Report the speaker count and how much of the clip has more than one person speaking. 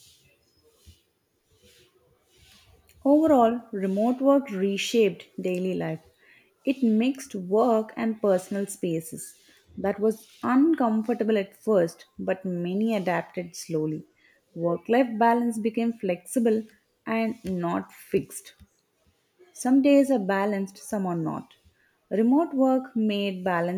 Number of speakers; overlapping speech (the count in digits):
1, no overlap